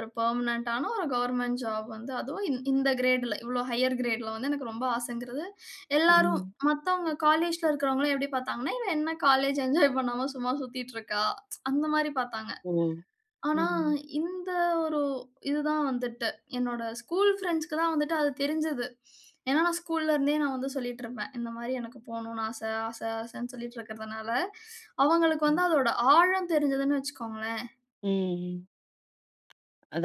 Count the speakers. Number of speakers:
2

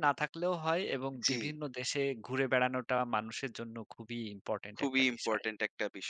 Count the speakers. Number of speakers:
2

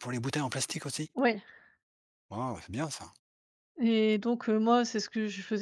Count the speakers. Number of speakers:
2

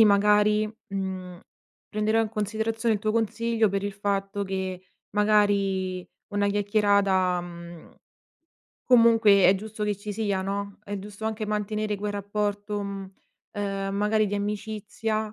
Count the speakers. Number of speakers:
1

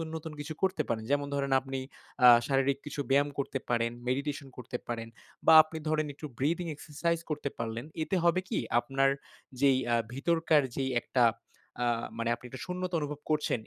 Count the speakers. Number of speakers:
1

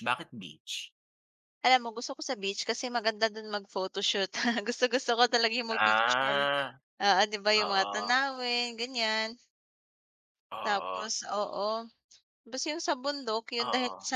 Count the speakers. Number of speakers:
2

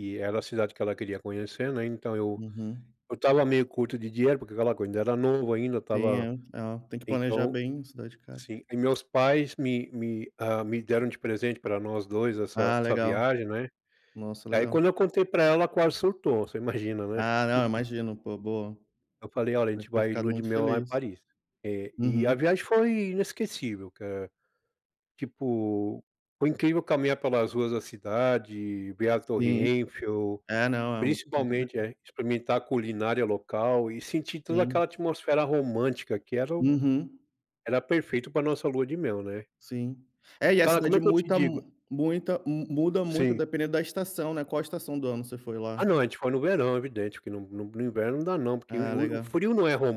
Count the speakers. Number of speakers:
2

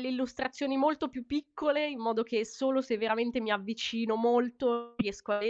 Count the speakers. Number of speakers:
1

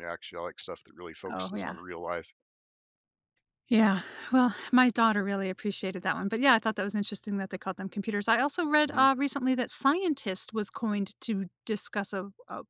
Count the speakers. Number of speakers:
2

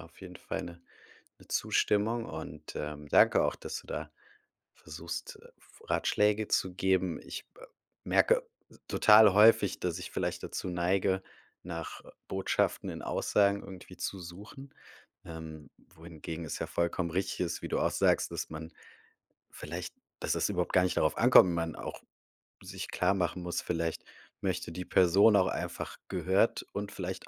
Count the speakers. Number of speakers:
1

